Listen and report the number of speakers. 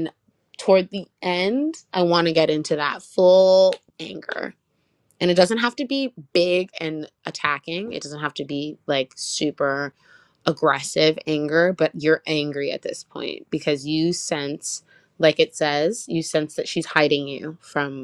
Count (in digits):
1